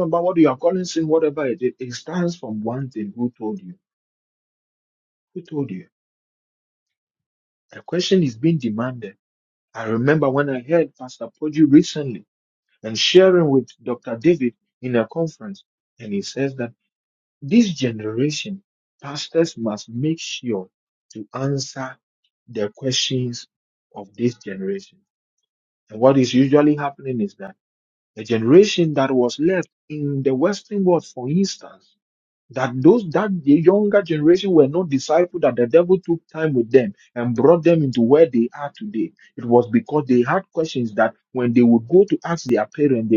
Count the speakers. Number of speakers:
1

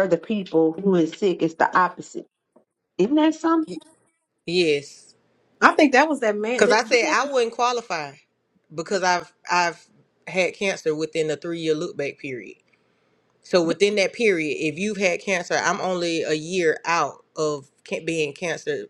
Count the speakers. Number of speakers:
3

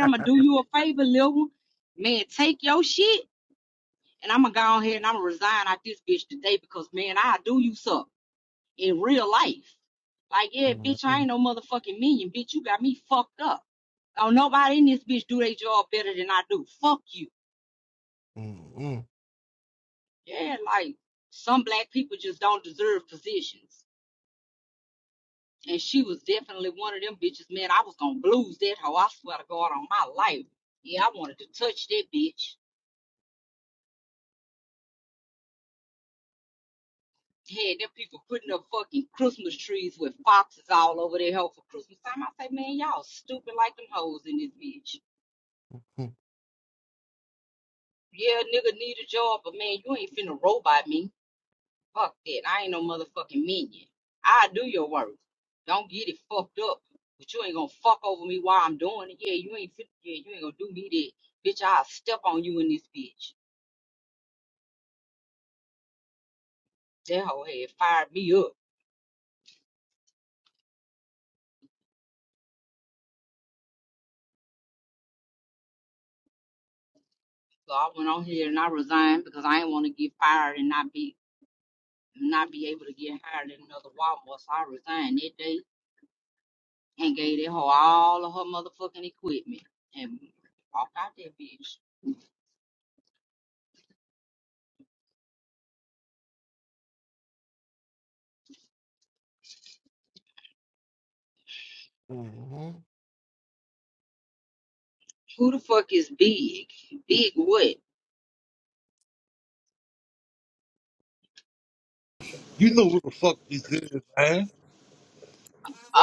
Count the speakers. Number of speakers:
3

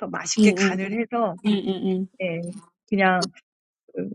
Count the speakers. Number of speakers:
2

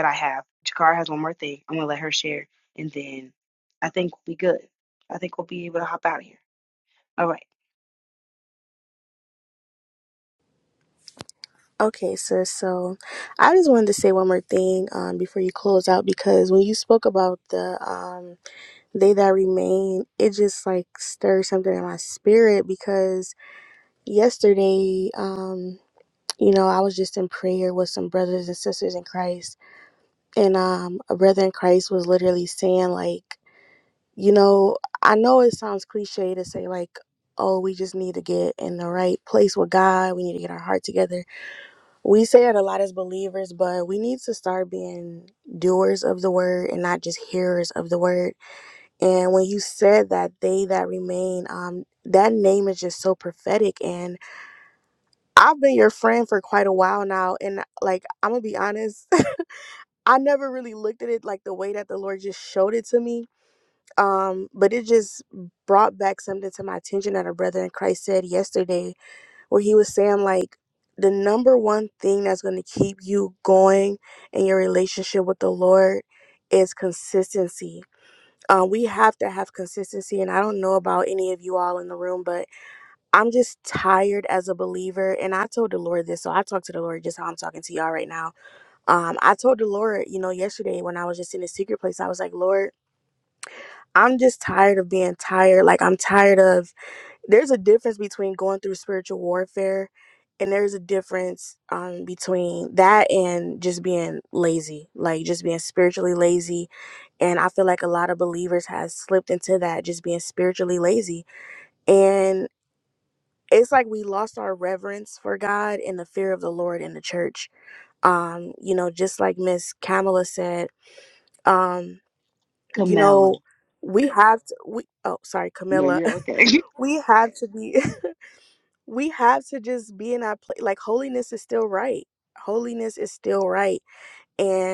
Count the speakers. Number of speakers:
2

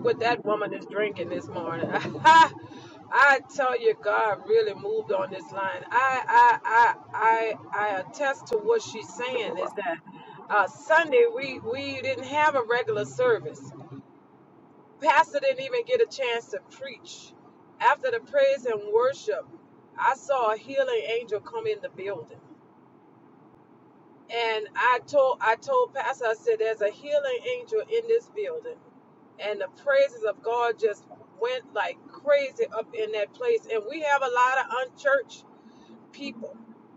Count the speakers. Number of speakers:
1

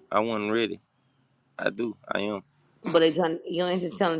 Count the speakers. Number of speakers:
2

